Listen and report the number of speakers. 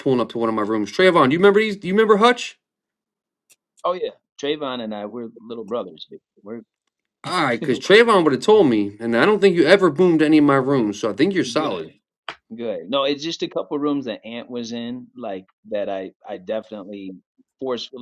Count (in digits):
2